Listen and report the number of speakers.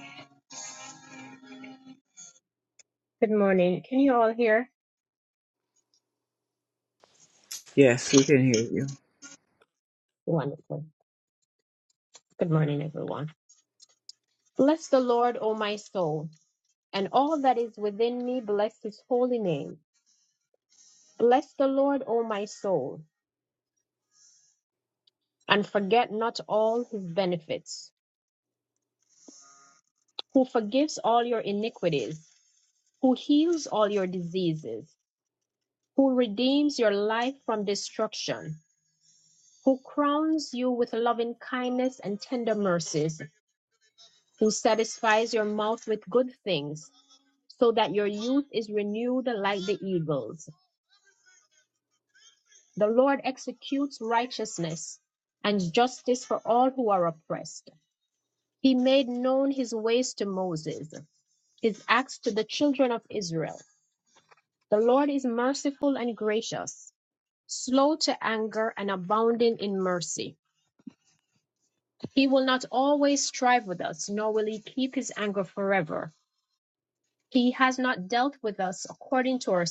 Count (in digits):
2